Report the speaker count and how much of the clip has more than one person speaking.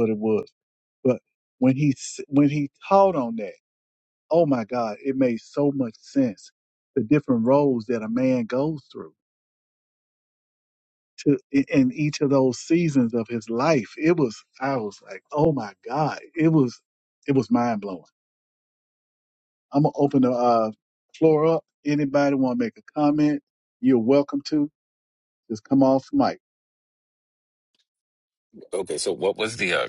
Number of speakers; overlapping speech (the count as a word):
two, no overlap